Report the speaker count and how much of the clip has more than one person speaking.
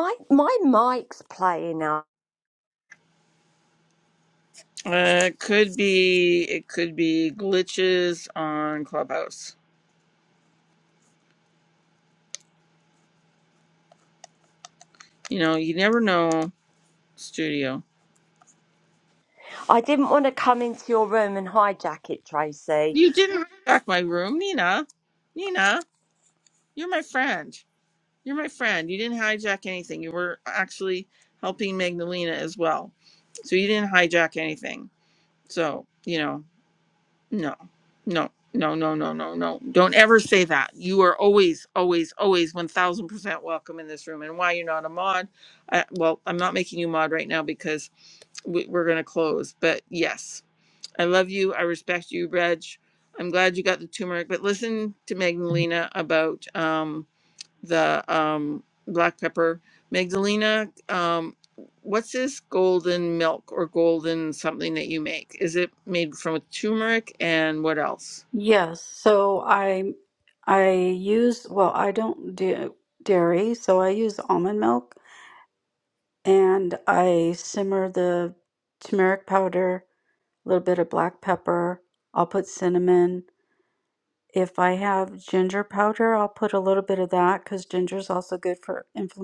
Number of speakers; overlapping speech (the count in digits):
3, under 1%